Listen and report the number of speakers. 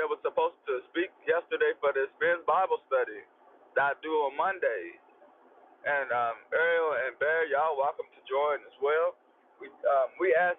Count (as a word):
one